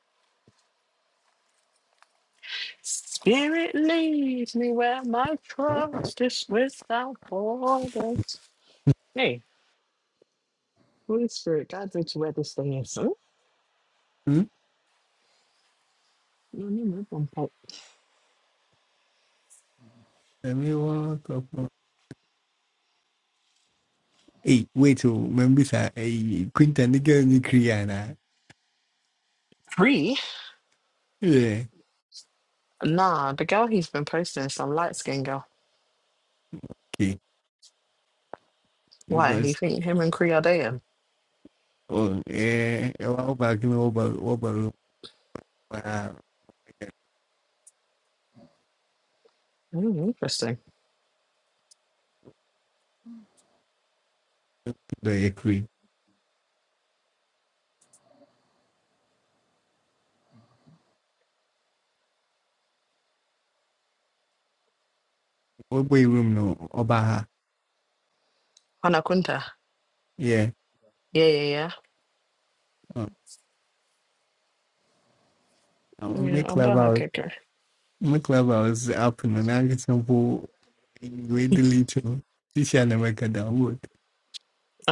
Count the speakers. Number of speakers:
2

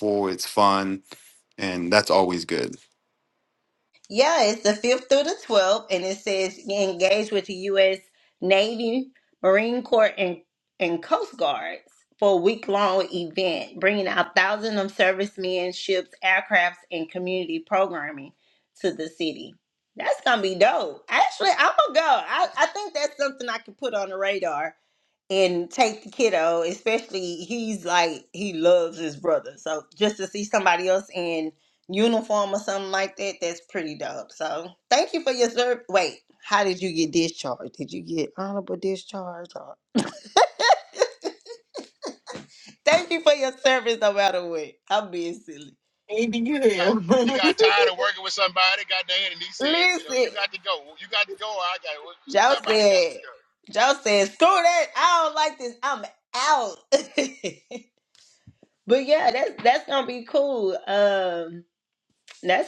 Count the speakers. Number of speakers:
4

